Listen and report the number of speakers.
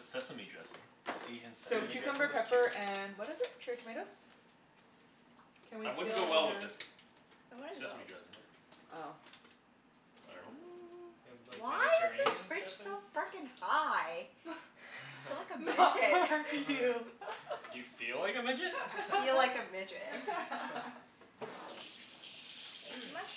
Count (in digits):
4